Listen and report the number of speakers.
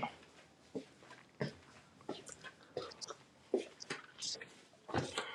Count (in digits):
0